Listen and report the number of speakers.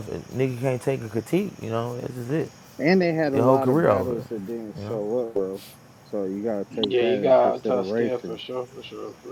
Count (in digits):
3